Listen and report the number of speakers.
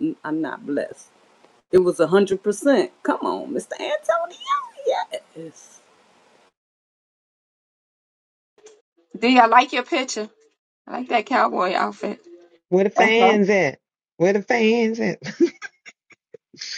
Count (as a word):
three